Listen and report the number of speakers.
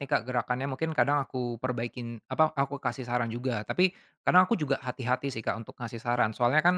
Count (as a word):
one